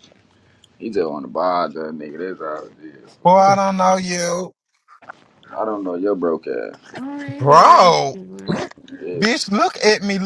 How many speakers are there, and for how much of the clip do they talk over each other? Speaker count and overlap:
three, about 10%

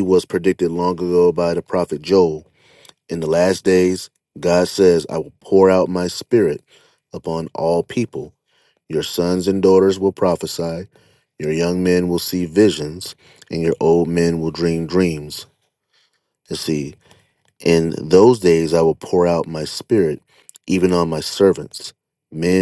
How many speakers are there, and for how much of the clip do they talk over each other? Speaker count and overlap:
one, no overlap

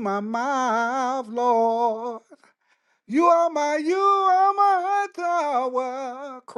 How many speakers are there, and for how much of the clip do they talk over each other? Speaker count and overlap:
one, no overlap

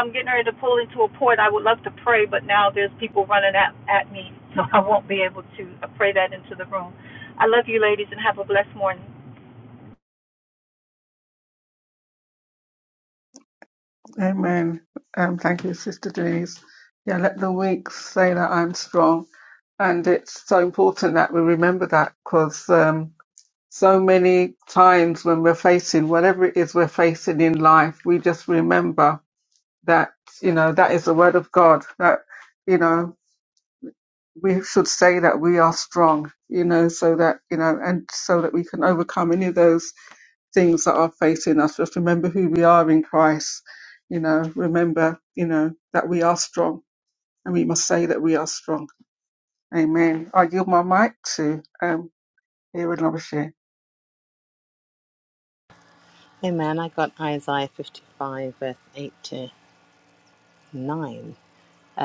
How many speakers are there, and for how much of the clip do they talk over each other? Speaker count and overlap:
three, no overlap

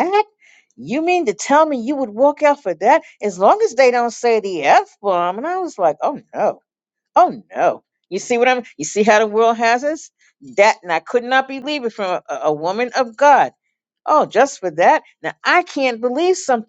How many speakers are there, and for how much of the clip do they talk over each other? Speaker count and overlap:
one, no overlap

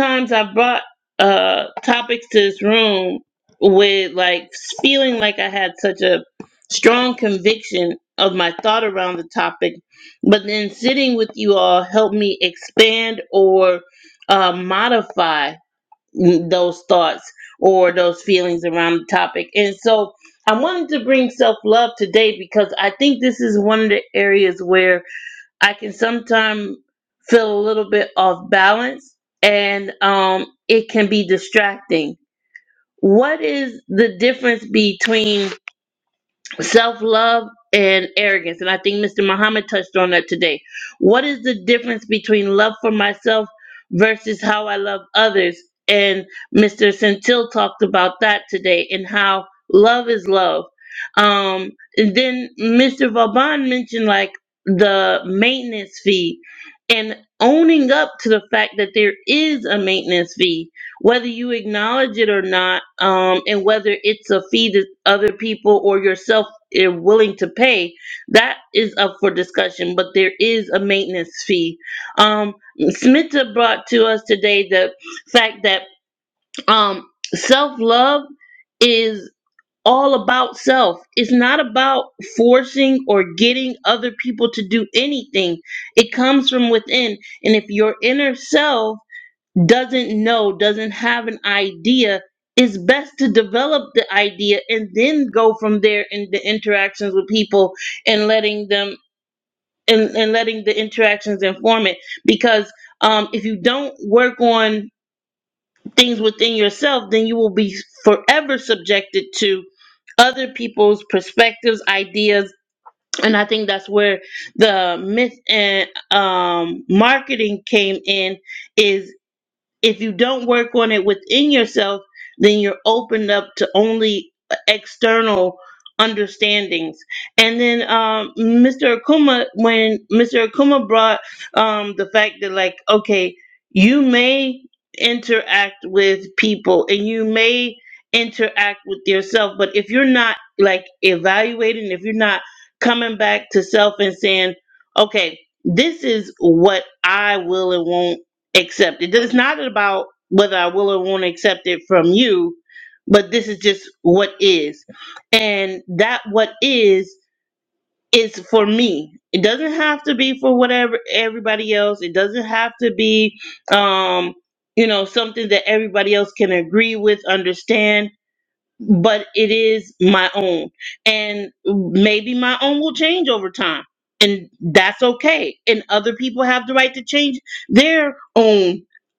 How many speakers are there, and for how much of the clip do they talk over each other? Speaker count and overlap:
one, no overlap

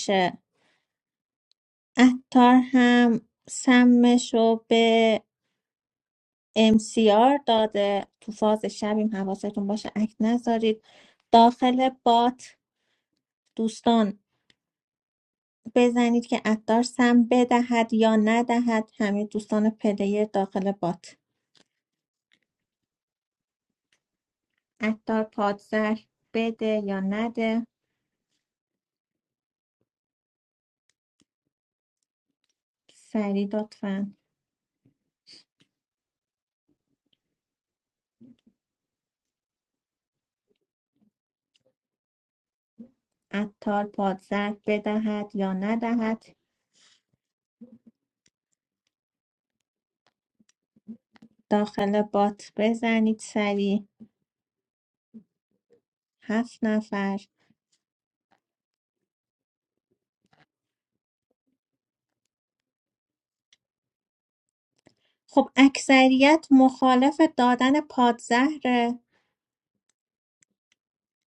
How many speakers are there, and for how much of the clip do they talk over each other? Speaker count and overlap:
one, no overlap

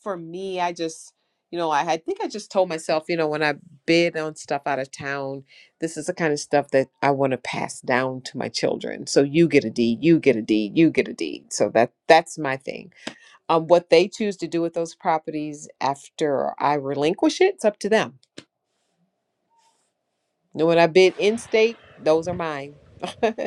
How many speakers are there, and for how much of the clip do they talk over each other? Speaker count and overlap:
one, no overlap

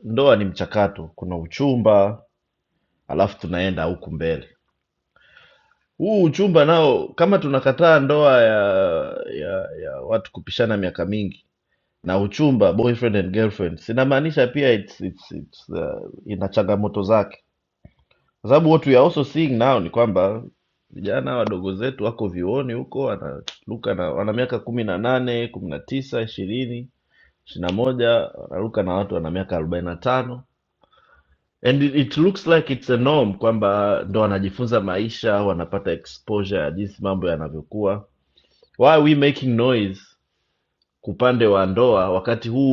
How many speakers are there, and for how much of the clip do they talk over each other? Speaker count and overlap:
one, no overlap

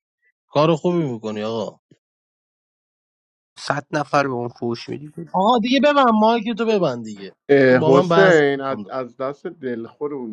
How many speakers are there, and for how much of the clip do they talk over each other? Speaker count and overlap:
three, about 7%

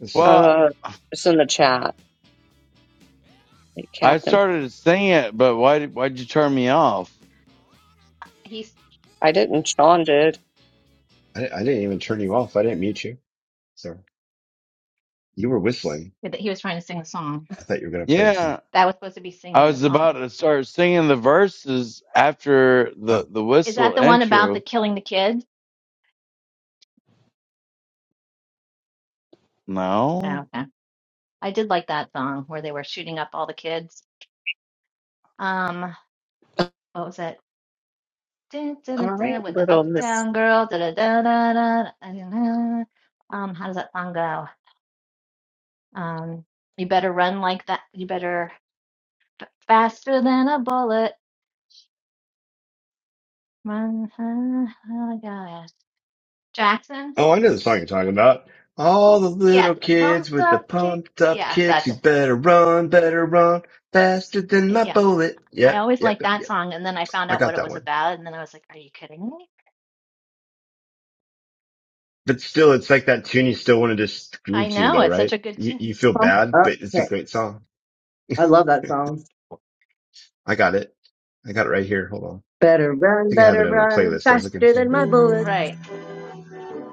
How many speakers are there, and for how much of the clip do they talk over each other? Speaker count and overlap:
five, about 13%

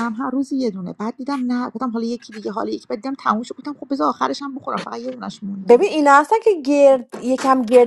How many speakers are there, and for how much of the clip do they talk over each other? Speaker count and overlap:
two, about 2%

